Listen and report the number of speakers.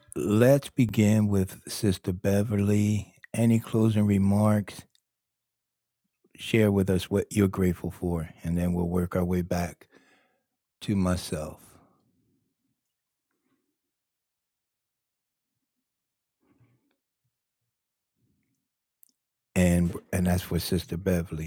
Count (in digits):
1